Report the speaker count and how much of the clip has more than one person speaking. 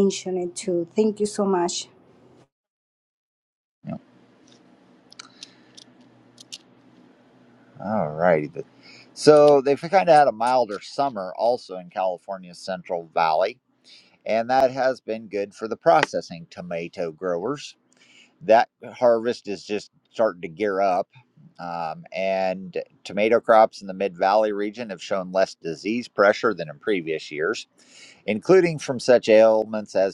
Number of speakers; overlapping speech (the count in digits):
2, no overlap